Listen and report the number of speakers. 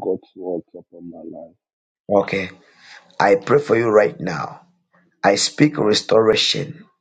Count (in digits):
2